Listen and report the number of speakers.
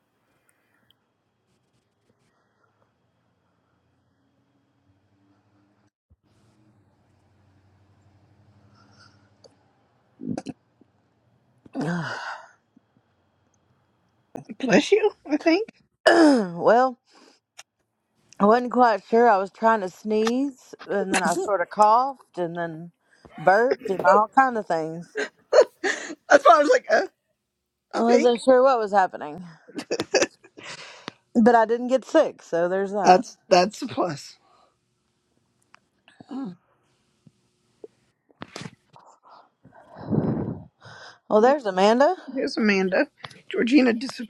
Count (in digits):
2